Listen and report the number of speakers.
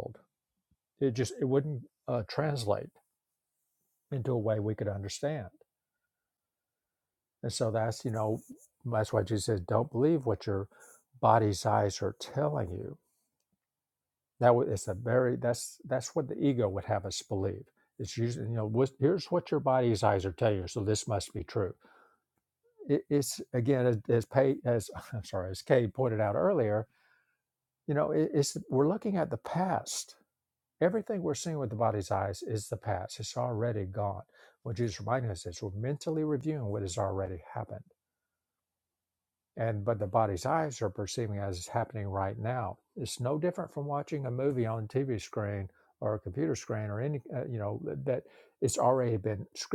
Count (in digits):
1